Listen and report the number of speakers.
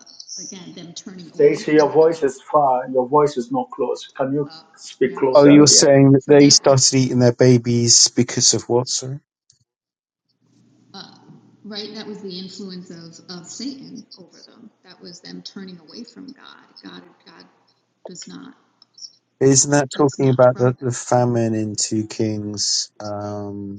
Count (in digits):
3